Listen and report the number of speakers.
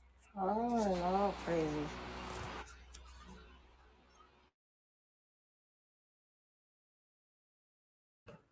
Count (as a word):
zero